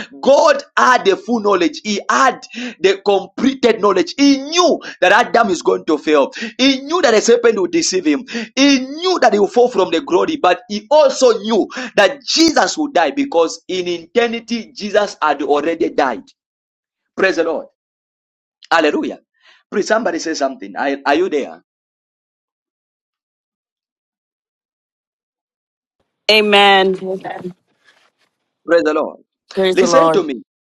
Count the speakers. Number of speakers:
two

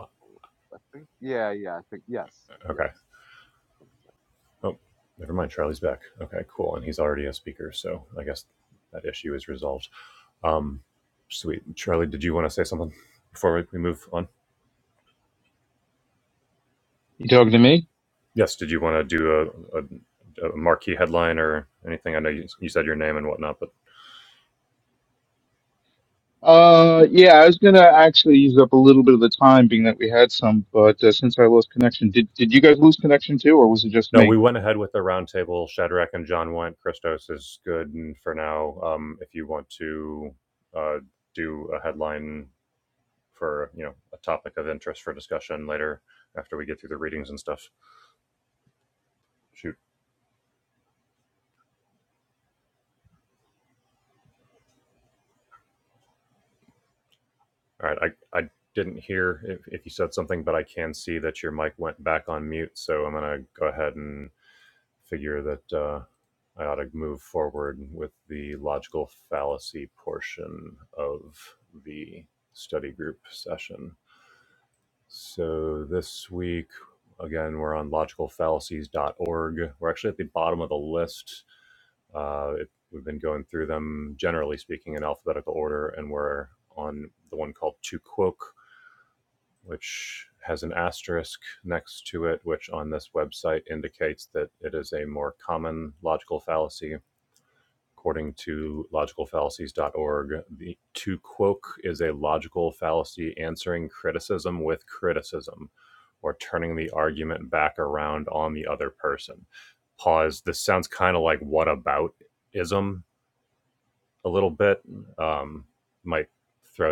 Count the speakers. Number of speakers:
three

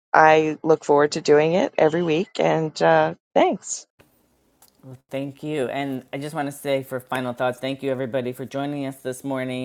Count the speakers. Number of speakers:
two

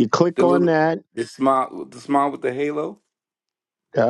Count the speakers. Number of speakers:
two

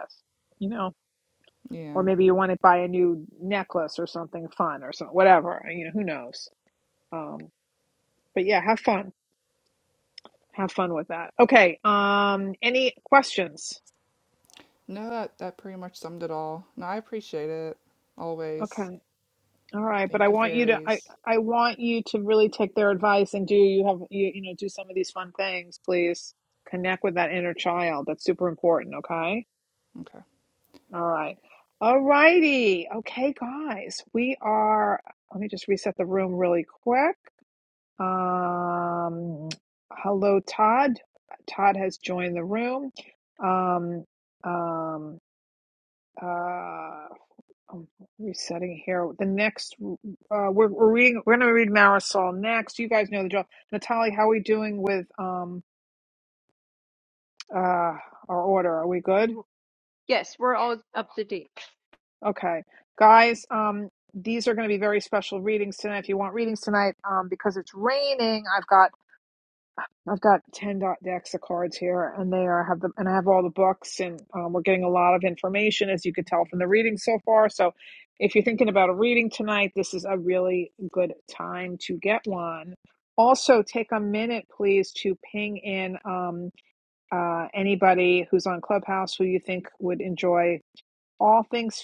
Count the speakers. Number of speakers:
three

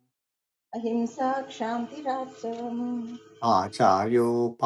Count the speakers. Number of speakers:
two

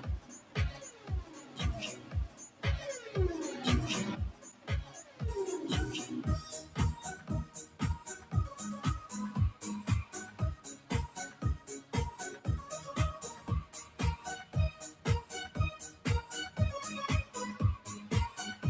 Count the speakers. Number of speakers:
zero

